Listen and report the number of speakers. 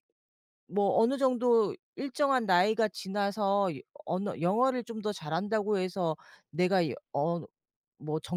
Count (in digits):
1